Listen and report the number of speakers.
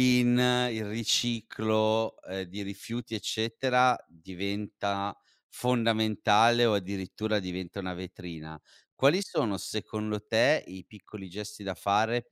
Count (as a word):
one